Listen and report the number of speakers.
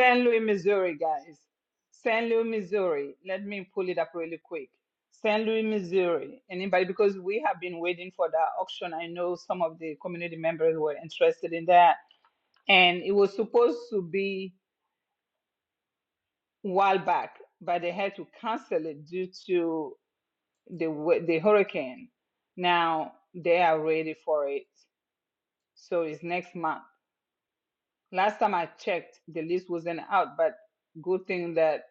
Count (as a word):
one